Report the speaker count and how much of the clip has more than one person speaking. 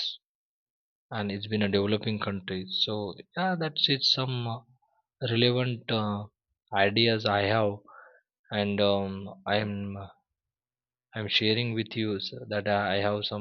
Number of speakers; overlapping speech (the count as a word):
one, no overlap